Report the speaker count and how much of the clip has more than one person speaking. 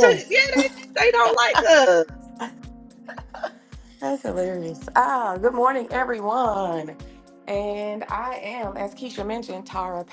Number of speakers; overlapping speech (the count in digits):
2, about 4%